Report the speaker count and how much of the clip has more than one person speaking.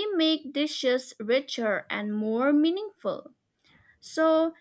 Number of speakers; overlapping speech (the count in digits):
1, no overlap